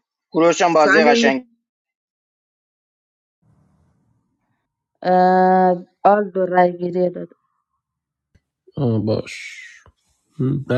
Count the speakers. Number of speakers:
3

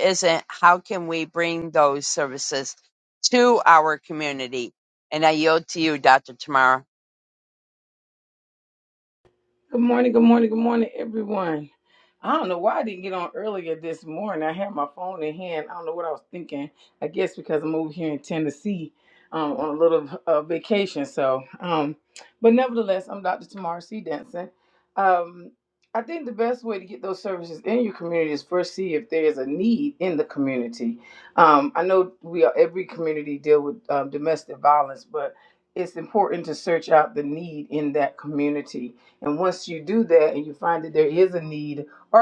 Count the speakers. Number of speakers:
2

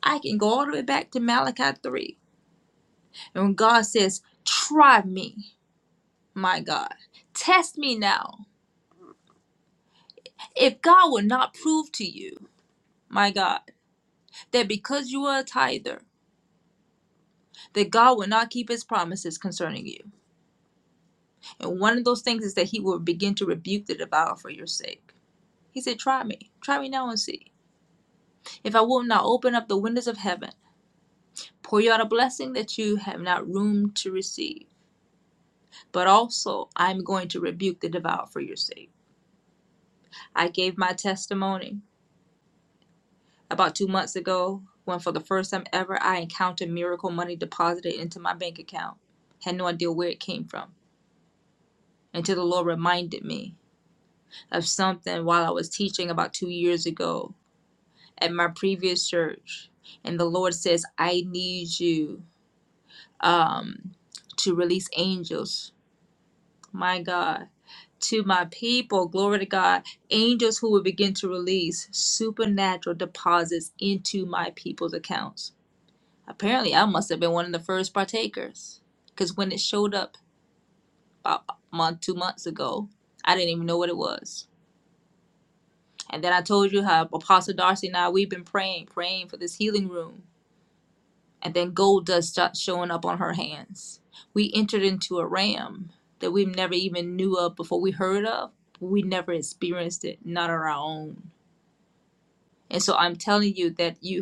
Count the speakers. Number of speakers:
1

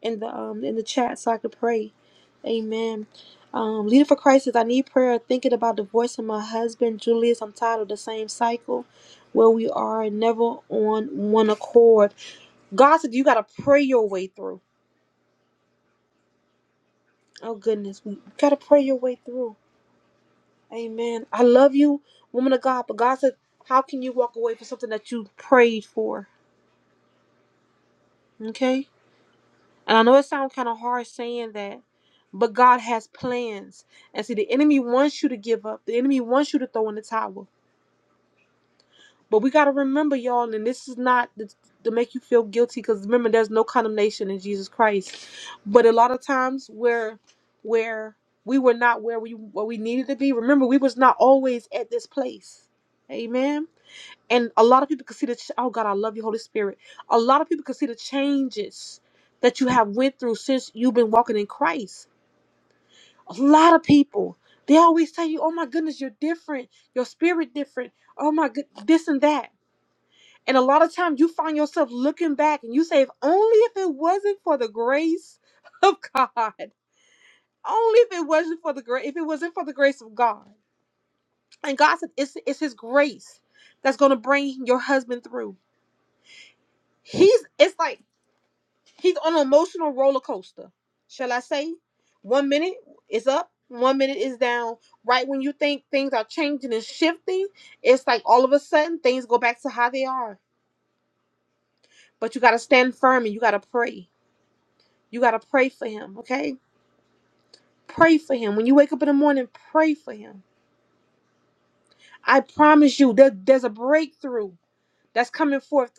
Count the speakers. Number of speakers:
1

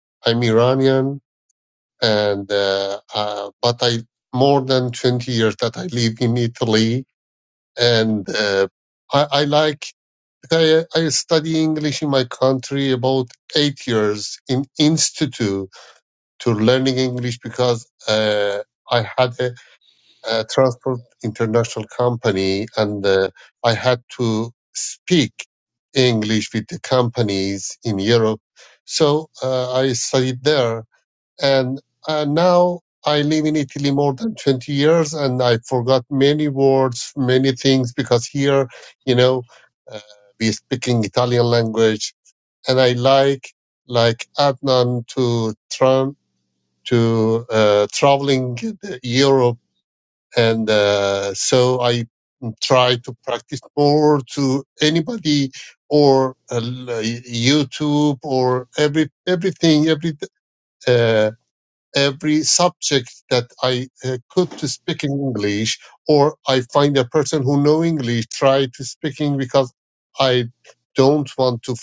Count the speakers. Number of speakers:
1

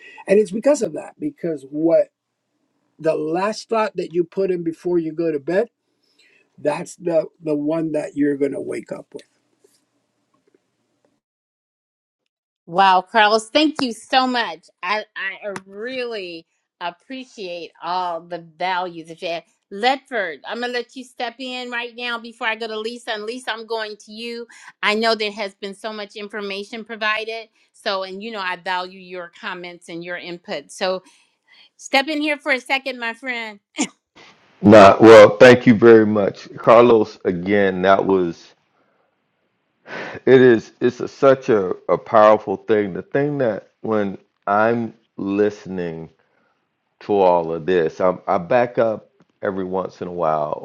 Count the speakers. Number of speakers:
3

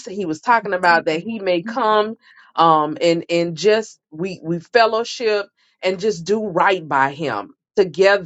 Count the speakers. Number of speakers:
1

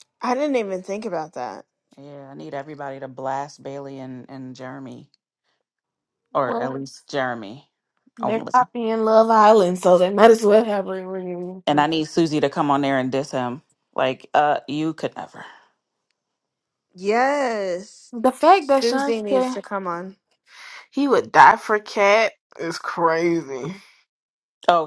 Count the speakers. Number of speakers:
3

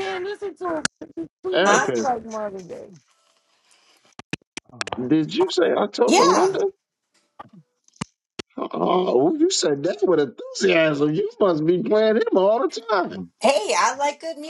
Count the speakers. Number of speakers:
3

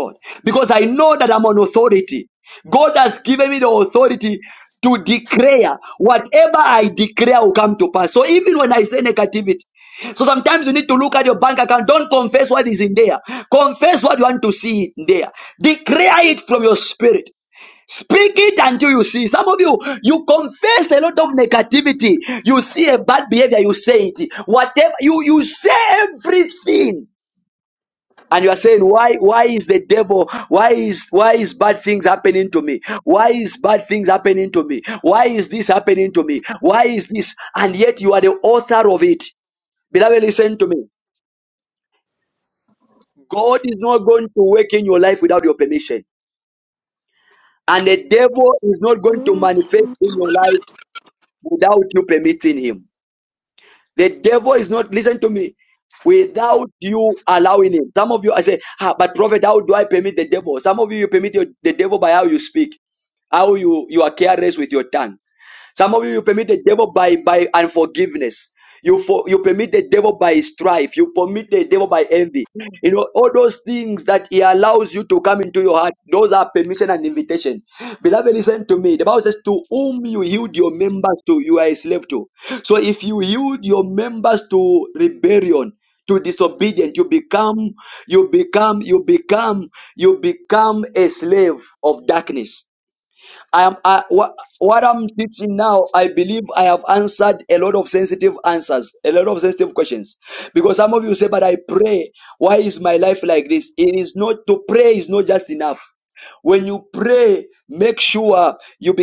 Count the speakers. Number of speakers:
1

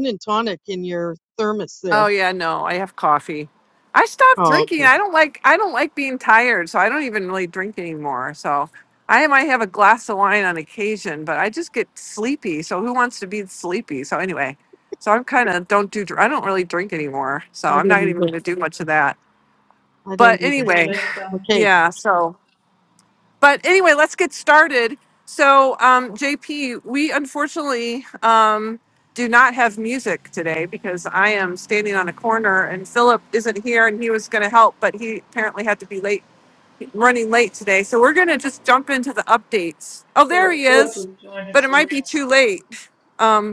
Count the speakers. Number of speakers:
3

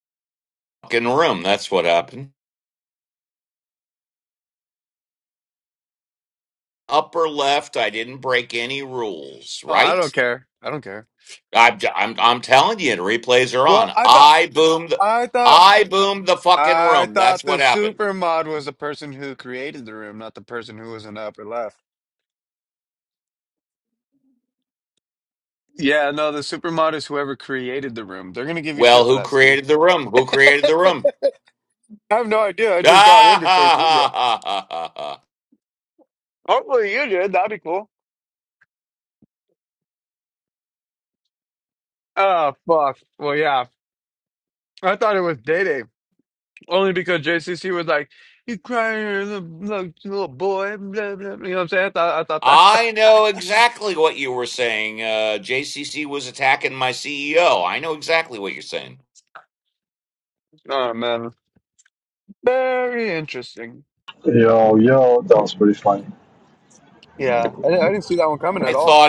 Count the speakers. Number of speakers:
3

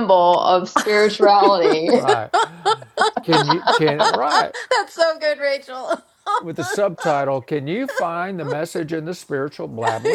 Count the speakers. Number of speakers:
3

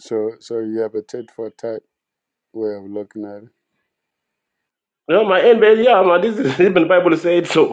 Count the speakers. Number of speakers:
2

